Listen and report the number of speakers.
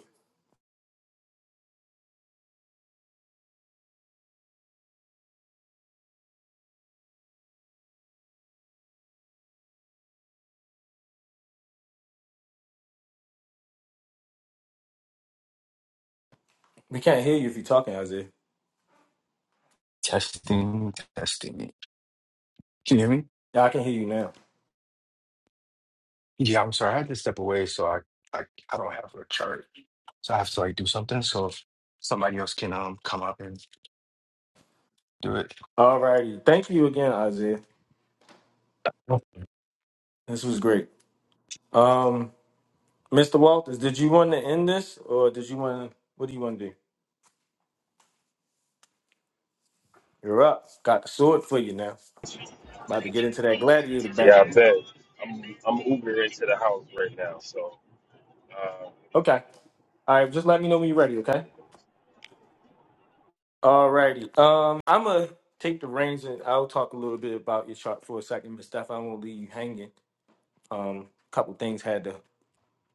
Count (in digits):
3